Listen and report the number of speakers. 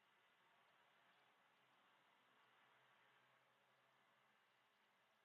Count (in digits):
0